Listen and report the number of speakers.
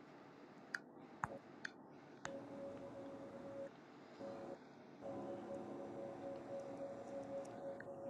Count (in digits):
0